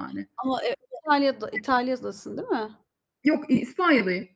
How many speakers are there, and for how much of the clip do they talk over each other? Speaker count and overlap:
two, no overlap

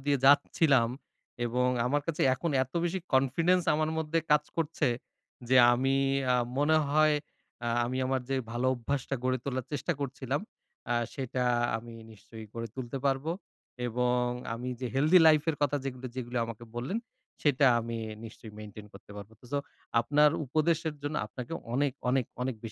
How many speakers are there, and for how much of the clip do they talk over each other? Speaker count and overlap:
one, no overlap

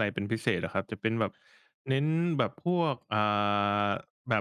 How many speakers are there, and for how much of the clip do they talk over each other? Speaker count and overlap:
one, no overlap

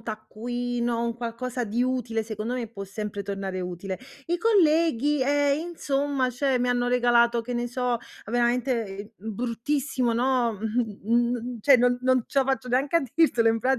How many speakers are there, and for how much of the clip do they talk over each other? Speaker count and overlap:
one, no overlap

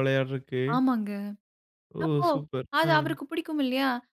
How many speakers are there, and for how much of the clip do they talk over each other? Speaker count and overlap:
two, about 14%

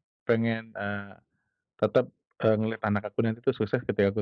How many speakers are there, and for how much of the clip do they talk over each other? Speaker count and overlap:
one, no overlap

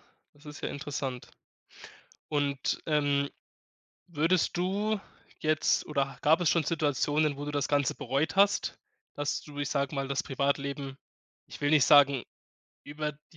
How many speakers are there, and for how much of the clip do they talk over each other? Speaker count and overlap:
one, no overlap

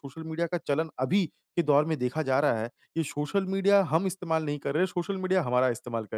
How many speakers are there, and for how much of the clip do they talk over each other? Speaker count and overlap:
one, no overlap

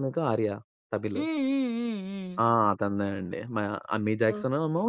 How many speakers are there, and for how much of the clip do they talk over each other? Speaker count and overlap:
two, about 7%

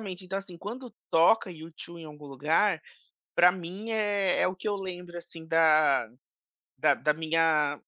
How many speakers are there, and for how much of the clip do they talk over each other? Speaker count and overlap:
one, no overlap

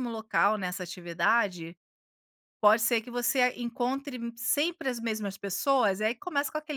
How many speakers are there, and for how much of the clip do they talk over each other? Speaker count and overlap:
one, no overlap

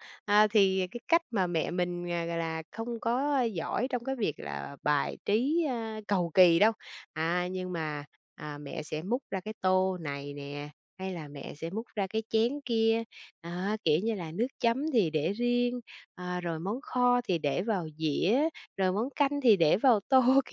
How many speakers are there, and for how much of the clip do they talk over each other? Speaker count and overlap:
one, no overlap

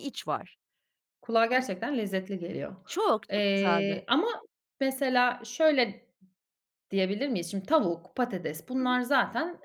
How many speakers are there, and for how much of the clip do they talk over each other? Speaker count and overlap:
two, about 10%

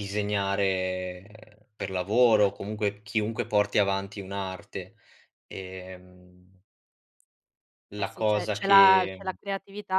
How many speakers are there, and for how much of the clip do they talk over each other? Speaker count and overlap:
two, about 12%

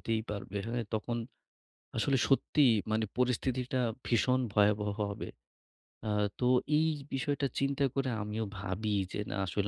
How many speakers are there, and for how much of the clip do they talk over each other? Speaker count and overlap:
one, no overlap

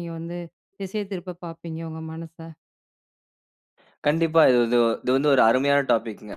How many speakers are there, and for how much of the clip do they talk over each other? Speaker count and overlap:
two, no overlap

